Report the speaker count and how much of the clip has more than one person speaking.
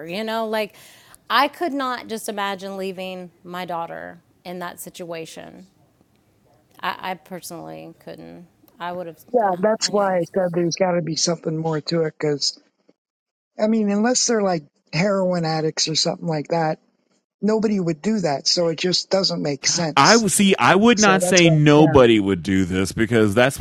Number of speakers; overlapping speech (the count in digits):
3, about 8%